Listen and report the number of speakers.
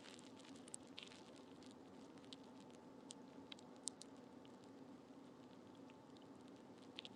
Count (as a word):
zero